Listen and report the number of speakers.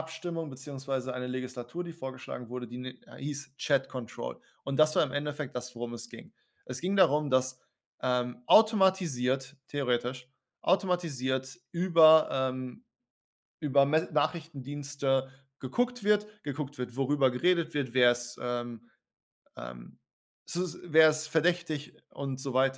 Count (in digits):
1